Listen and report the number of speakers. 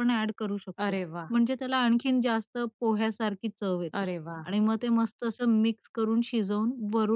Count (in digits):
2